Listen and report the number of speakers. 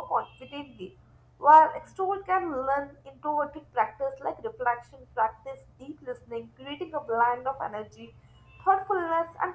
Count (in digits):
1